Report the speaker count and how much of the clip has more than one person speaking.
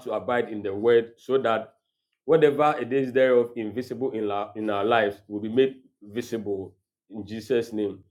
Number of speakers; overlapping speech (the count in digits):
1, no overlap